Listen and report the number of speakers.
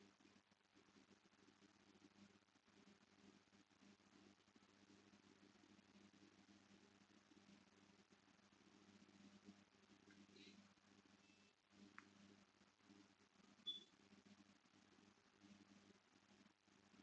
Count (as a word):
zero